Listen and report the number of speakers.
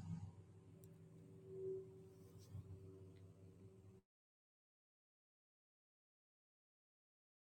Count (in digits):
0